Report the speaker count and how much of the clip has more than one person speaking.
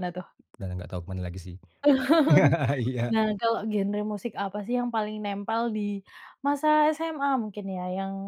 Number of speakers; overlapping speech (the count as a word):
two, under 1%